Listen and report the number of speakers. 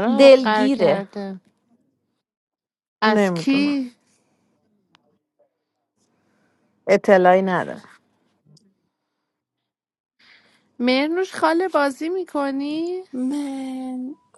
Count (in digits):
3